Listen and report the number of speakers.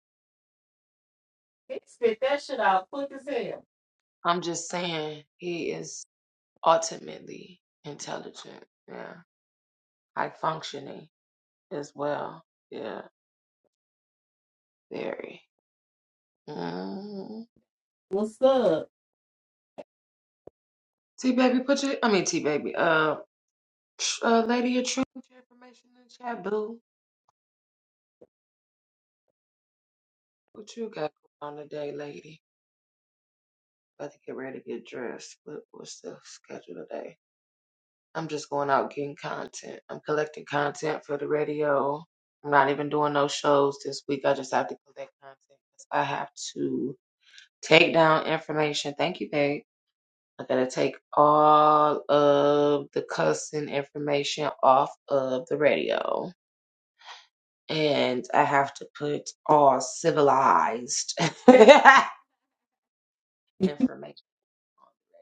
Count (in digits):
2